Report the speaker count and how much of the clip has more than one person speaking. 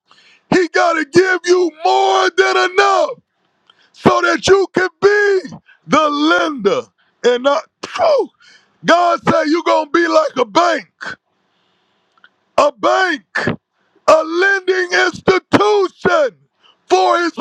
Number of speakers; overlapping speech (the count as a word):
one, no overlap